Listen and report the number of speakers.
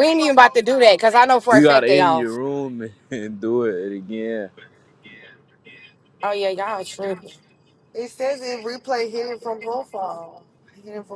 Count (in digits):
3